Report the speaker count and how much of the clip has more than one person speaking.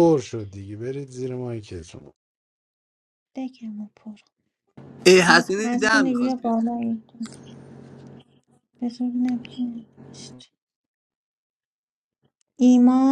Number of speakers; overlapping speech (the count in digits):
3, about 7%